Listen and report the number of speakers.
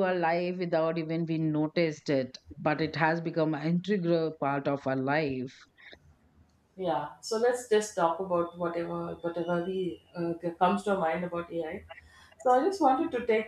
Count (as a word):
two